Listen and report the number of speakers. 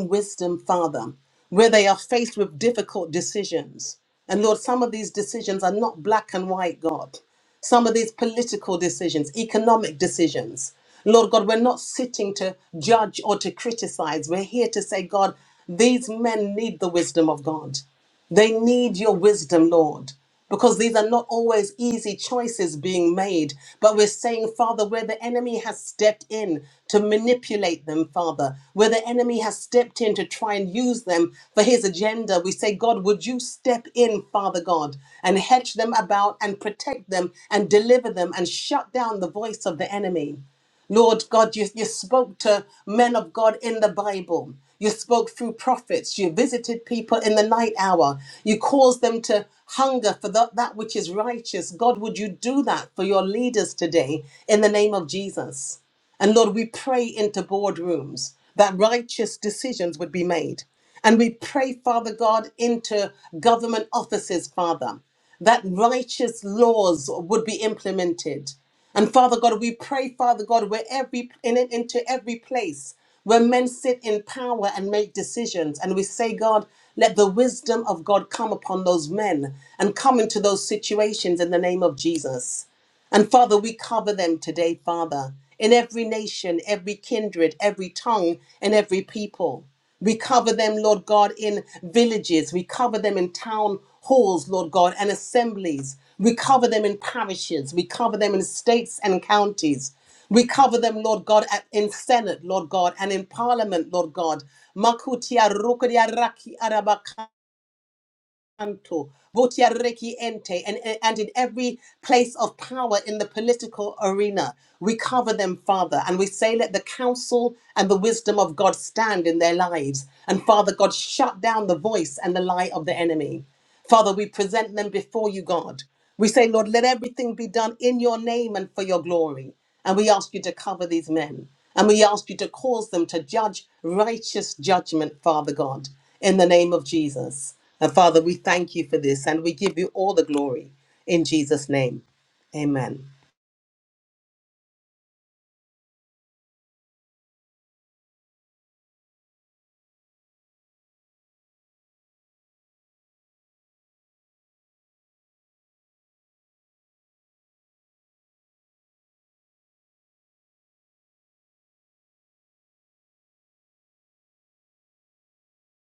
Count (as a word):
one